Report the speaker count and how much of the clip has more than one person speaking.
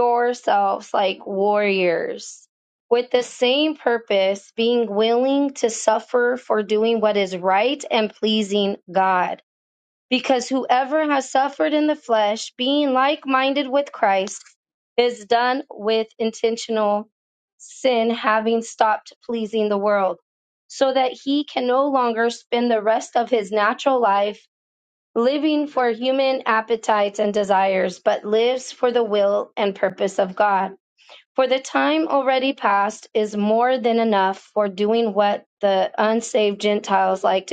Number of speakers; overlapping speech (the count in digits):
1, no overlap